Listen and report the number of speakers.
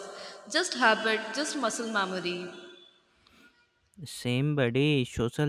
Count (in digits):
2